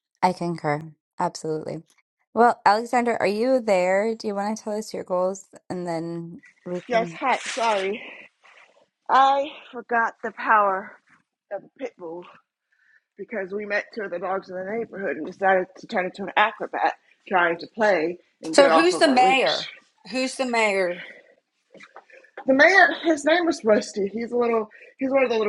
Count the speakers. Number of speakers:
three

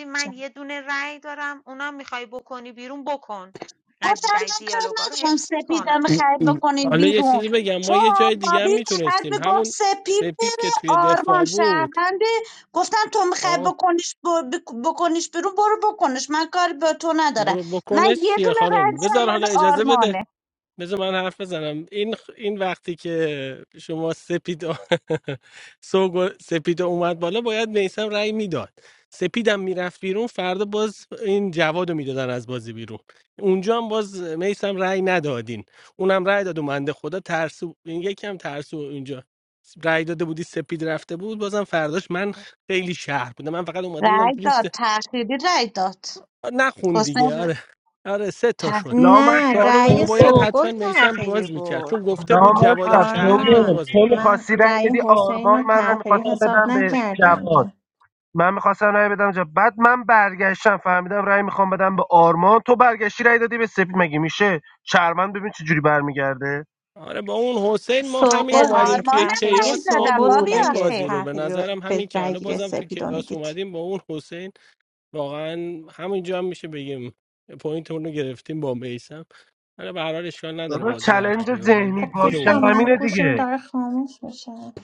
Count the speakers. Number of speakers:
five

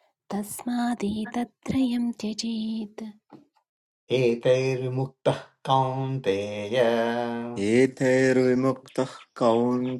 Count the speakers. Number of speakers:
three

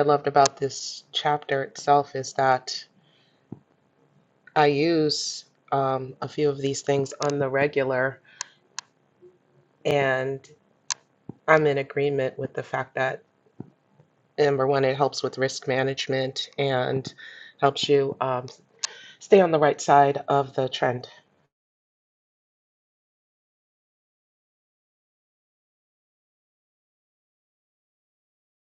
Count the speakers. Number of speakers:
one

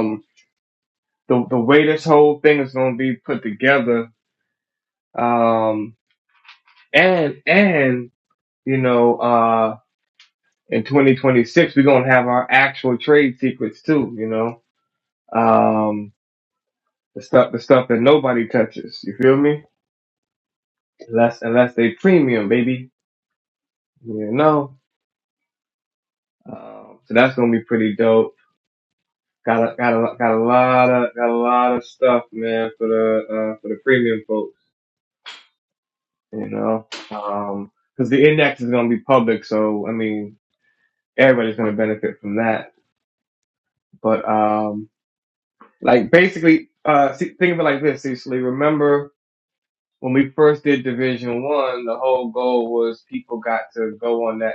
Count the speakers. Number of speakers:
one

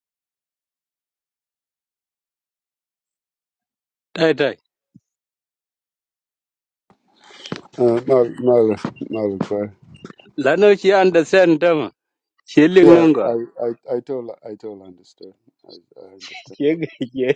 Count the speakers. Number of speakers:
two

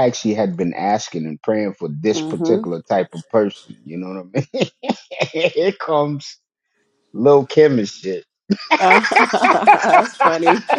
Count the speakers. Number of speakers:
two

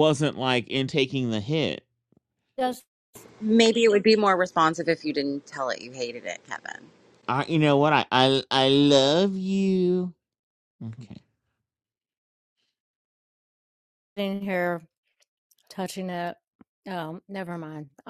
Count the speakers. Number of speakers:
three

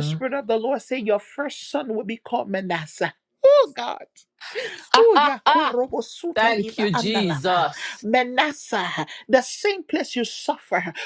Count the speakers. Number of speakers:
two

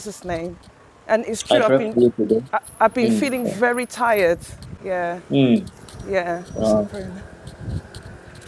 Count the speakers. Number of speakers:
two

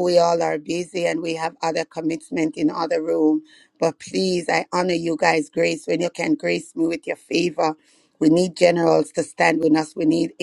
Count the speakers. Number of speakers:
one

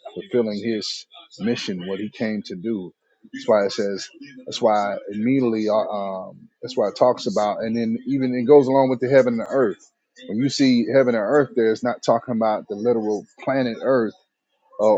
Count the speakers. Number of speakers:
one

